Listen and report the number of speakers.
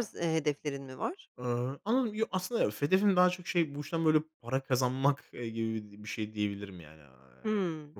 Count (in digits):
2